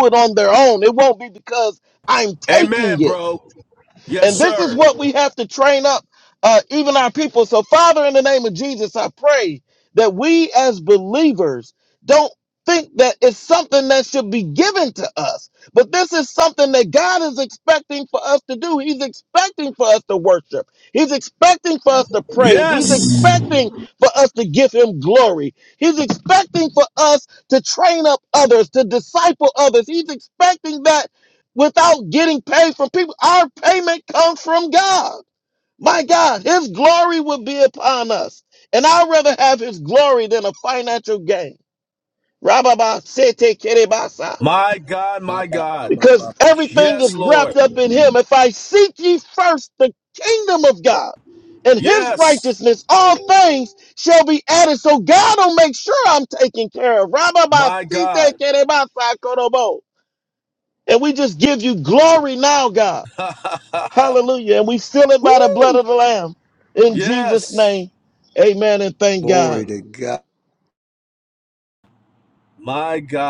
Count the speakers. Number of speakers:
3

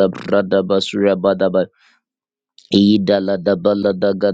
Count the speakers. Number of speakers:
1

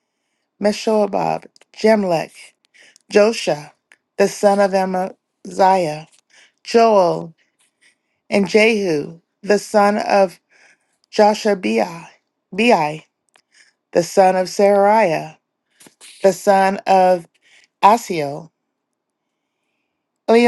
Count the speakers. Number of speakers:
1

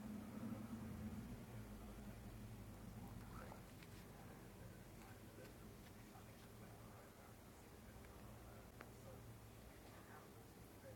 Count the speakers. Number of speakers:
0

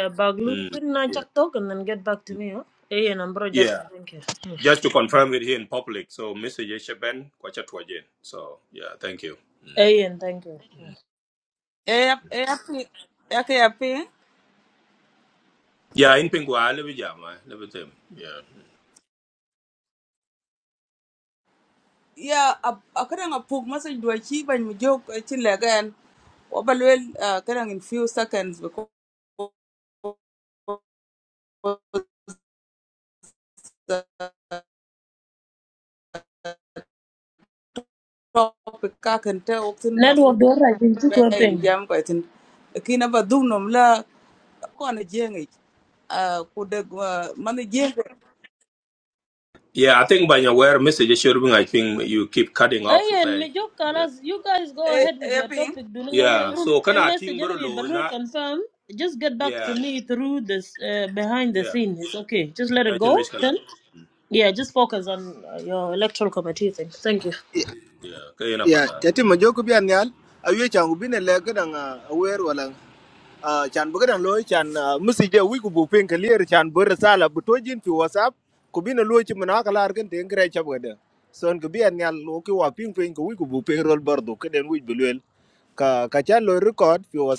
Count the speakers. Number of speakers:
4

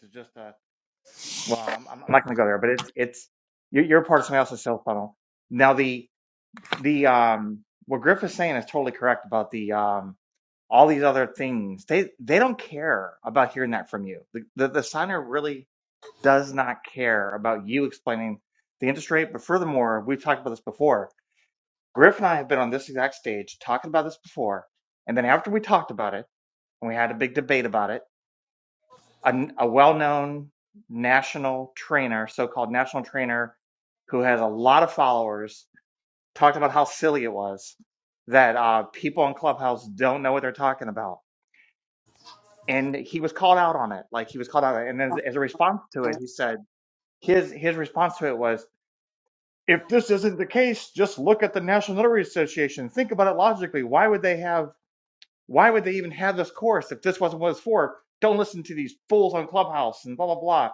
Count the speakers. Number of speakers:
1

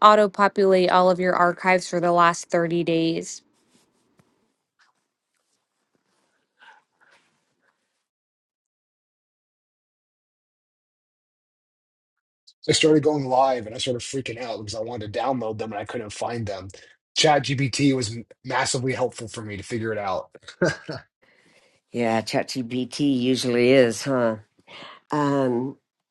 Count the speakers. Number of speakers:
3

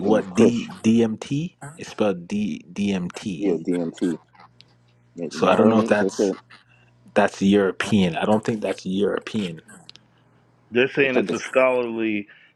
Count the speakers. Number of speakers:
3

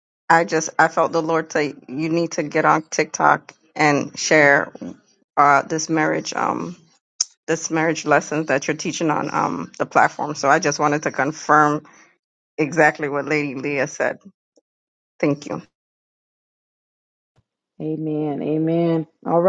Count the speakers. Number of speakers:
2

